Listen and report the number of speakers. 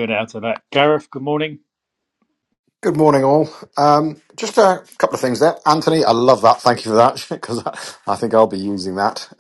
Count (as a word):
two